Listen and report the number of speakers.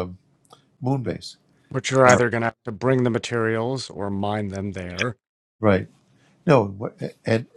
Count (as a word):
two